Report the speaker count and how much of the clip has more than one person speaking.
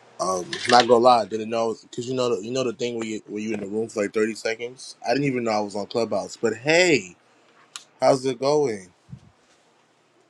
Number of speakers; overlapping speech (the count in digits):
1, no overlap